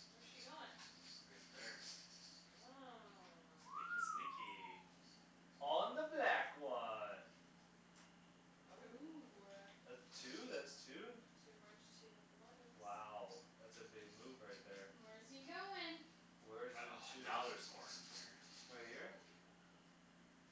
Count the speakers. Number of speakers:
4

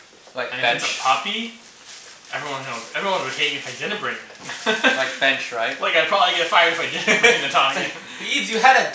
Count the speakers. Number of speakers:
3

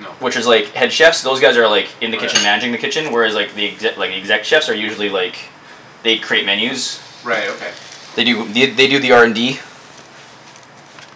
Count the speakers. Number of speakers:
2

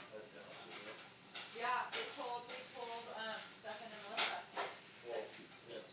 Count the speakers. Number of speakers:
2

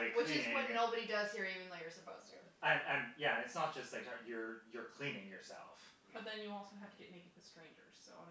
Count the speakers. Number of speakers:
3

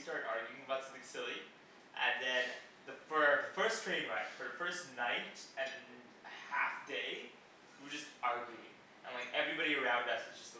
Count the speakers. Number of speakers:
1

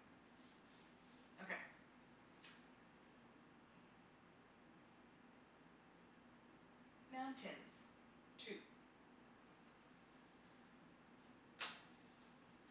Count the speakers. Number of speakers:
1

